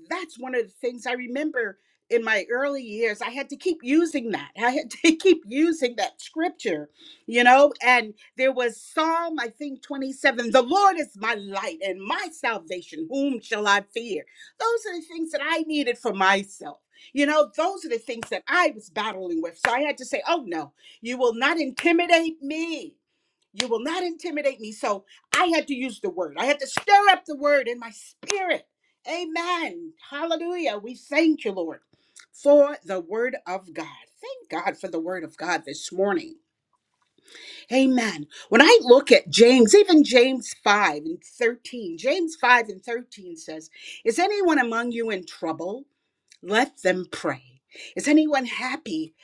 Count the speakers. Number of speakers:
1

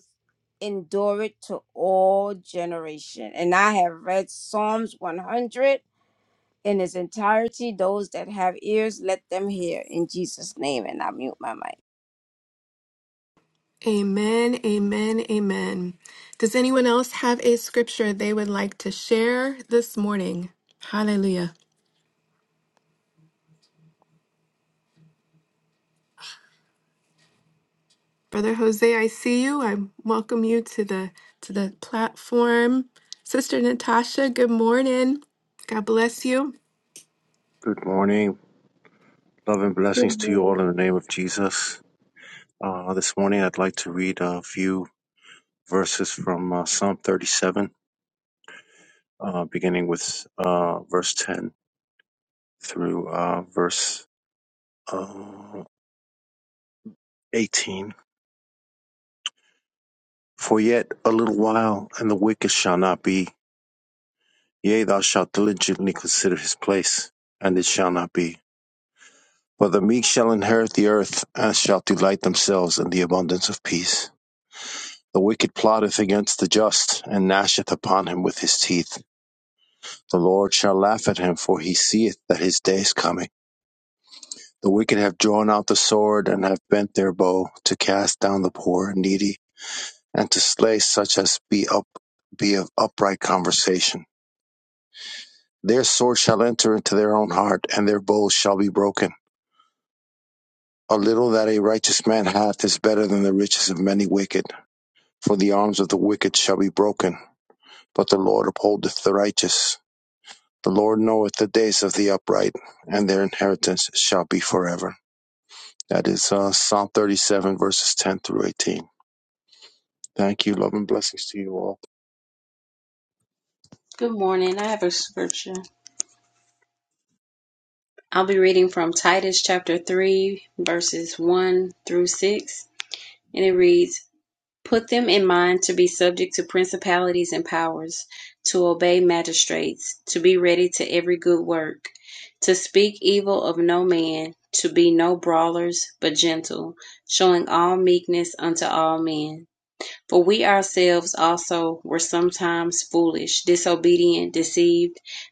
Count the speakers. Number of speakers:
4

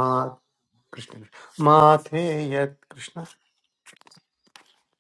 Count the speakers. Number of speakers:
1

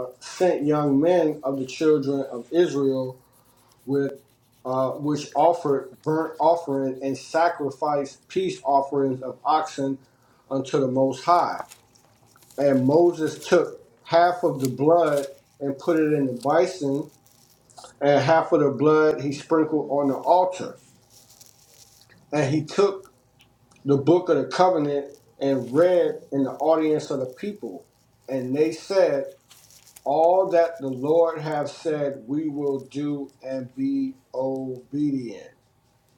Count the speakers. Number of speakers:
1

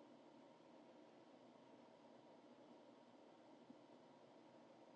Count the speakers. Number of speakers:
0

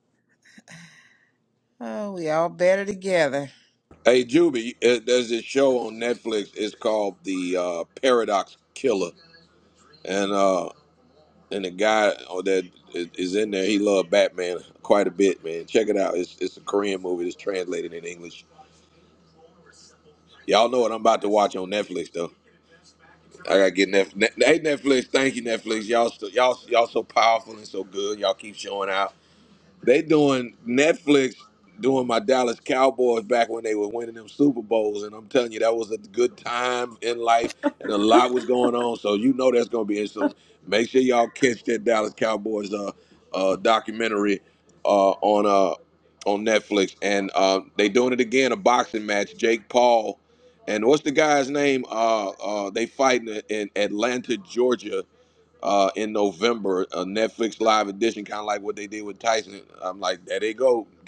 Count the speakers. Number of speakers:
2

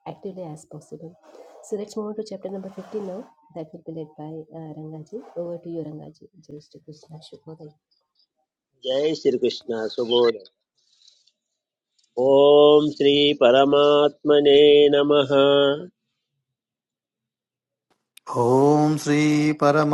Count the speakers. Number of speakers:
3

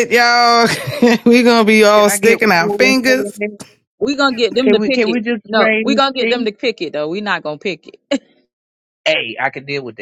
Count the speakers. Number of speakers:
3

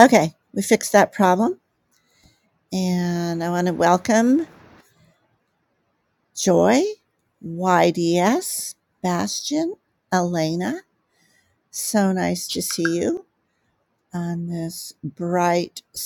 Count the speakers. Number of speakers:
1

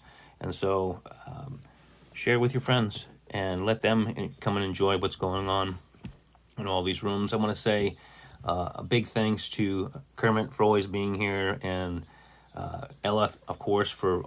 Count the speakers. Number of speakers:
1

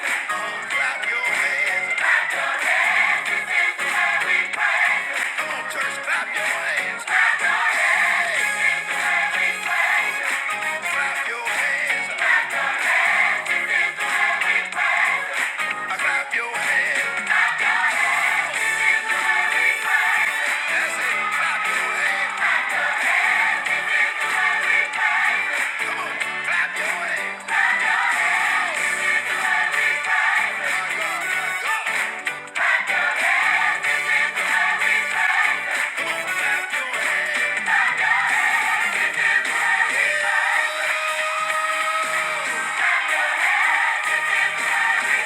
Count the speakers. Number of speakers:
0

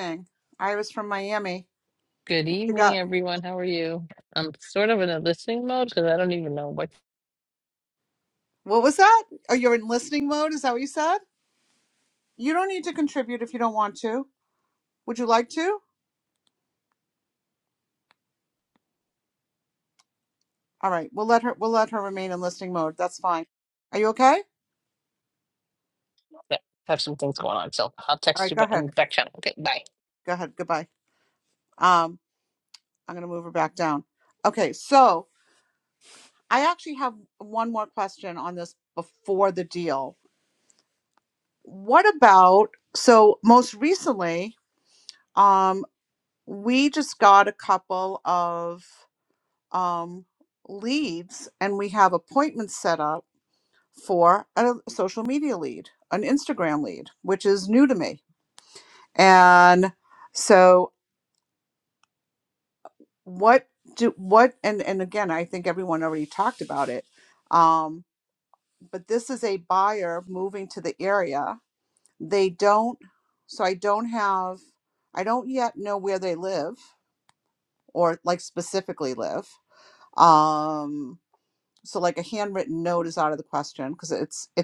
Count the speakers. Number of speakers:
2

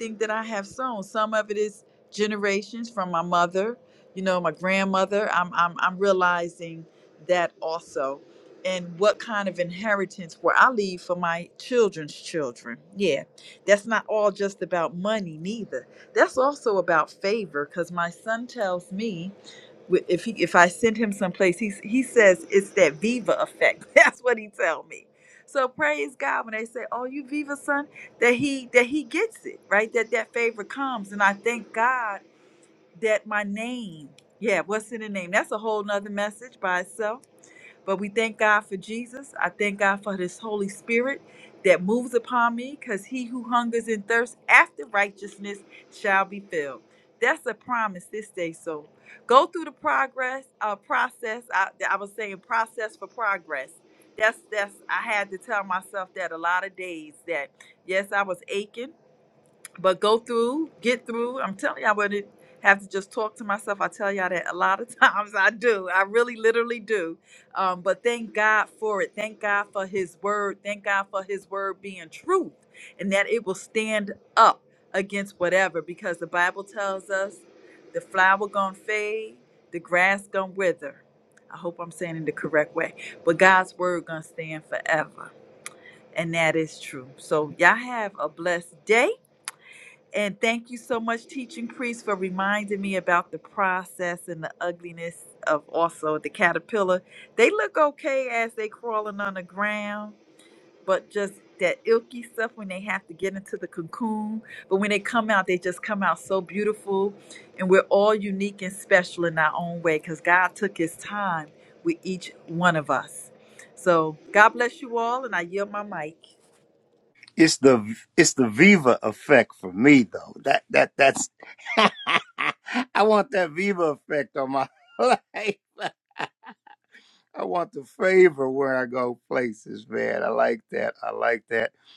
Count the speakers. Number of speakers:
2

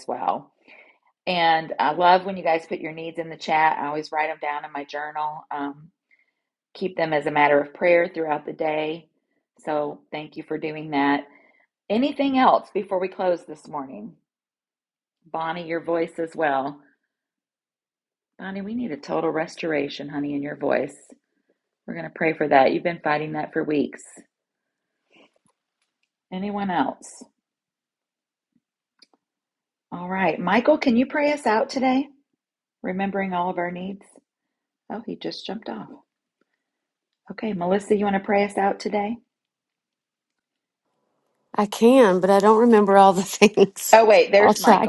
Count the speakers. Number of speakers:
2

